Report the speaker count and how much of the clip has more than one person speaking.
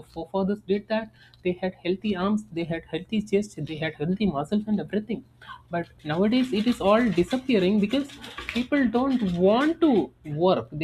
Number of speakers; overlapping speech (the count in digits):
1, no overlap